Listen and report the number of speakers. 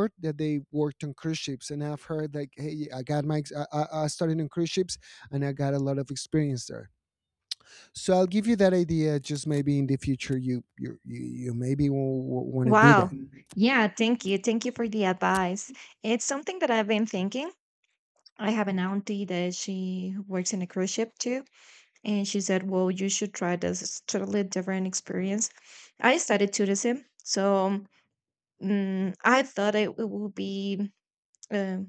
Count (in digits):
2